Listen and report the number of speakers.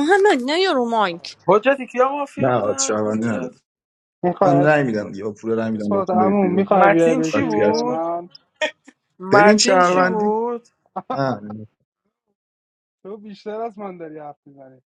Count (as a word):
four